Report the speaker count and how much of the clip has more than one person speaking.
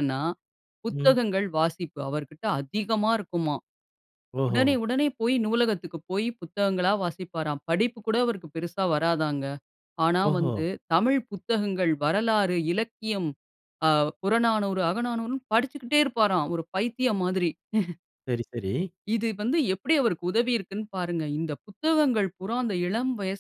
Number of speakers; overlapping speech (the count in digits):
2, about 4%